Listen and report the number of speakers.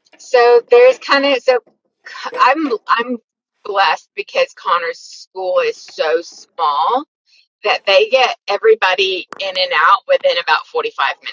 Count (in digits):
1